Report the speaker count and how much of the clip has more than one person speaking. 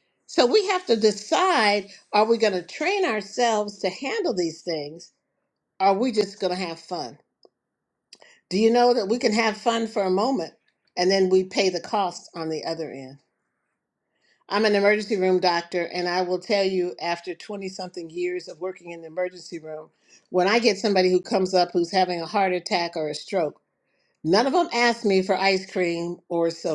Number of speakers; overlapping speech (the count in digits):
1, no overlap